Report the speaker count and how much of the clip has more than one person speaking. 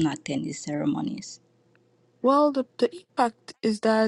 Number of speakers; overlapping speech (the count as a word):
two, no overlap